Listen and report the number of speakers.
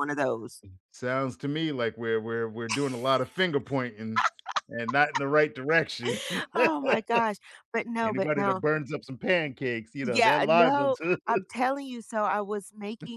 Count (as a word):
two